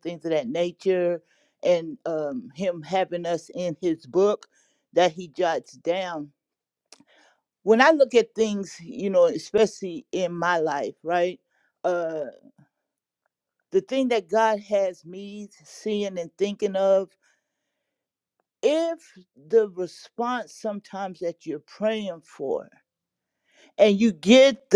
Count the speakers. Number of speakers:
one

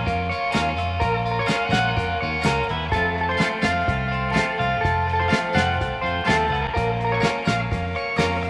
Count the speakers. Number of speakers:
zero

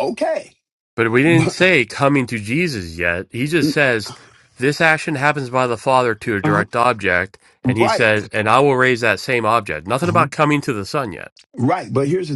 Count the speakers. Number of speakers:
two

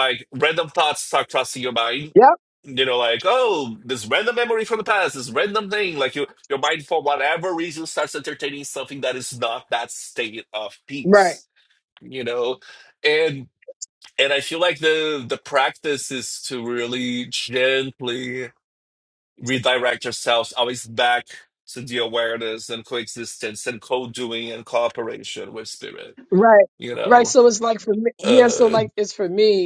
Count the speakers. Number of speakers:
two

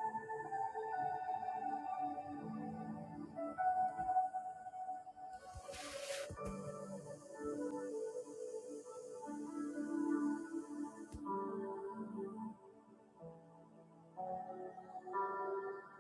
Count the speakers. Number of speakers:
zero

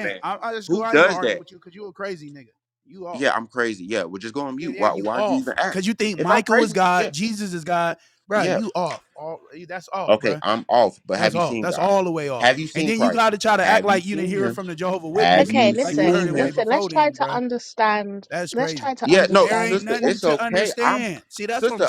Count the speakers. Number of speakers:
three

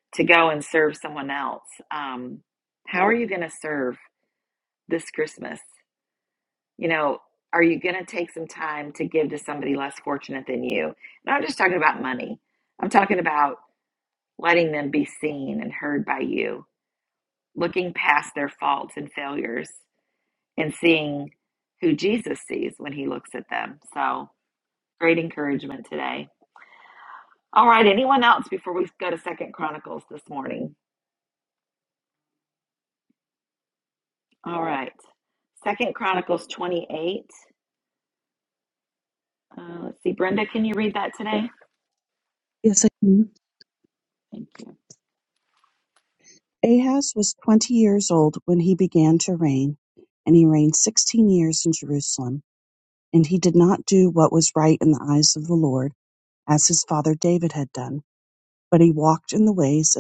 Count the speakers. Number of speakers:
two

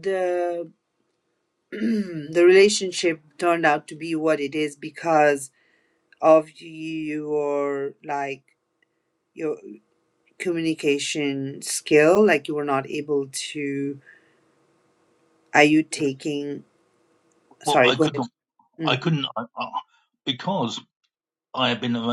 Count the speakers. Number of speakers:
two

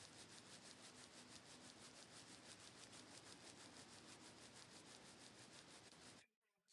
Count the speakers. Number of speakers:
zero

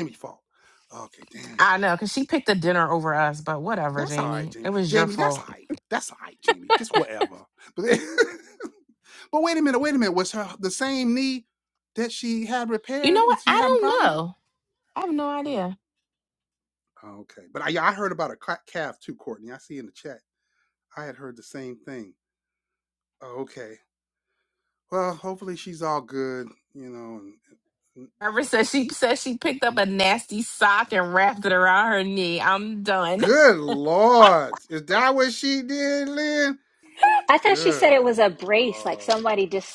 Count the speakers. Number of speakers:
three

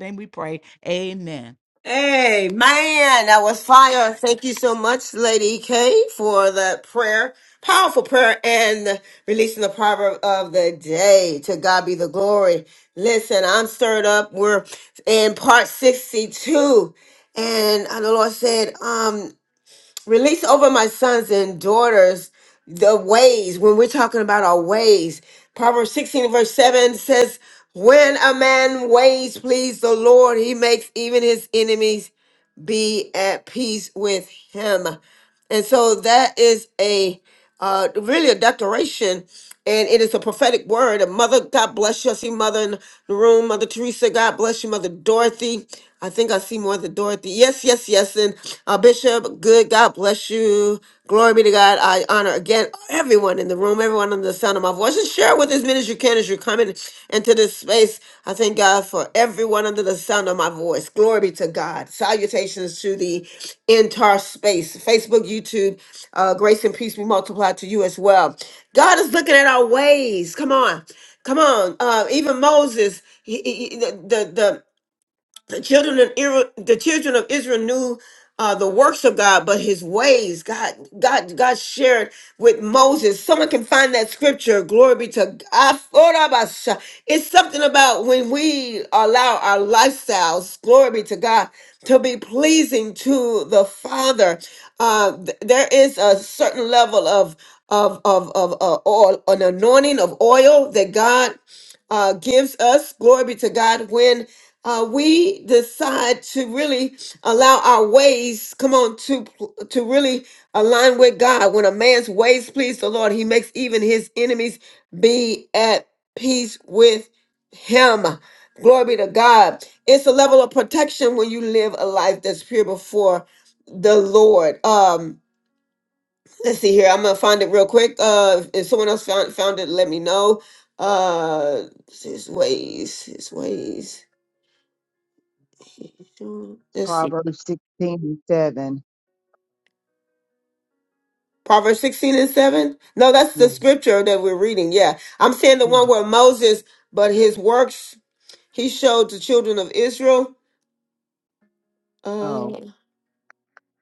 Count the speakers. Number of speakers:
three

